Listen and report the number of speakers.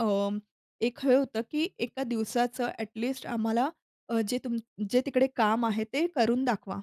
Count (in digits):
1